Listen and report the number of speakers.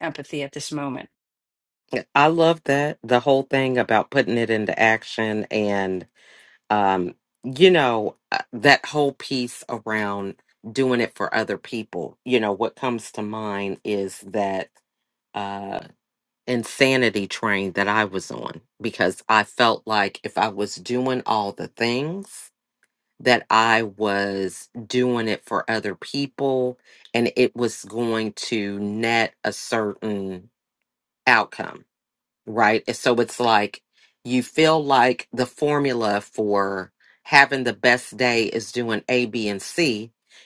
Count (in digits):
2